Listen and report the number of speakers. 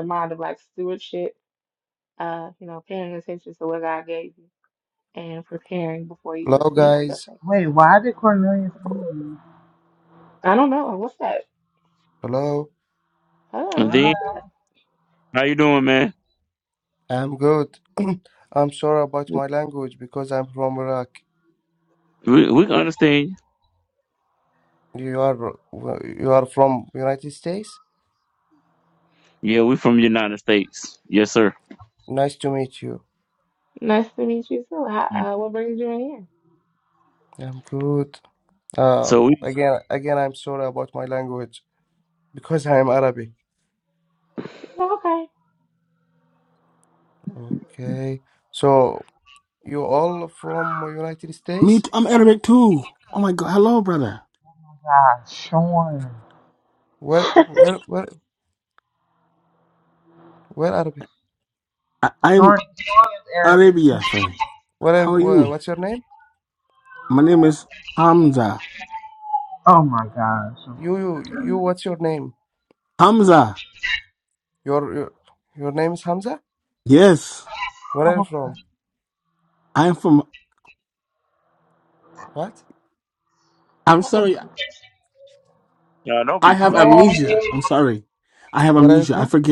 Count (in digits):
5